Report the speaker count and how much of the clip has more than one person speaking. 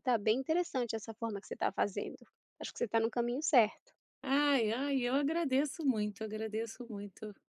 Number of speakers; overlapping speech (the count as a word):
two, no overlap